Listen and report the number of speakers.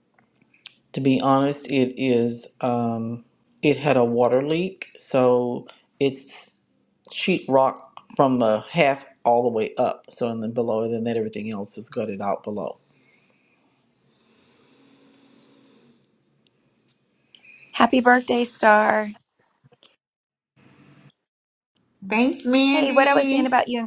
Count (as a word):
three